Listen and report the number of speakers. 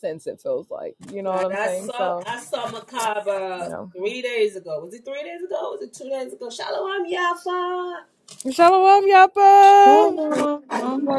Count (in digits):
3